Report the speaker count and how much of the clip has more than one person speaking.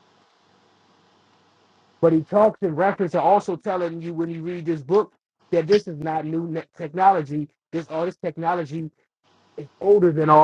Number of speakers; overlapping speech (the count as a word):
one, no overlap